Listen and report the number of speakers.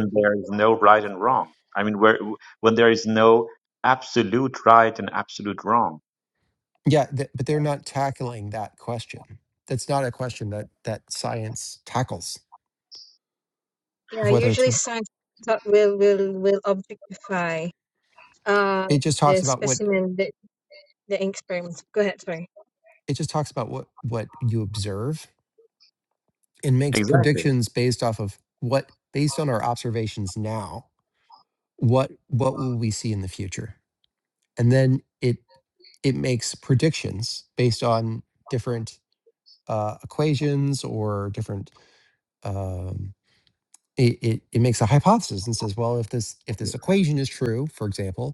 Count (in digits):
3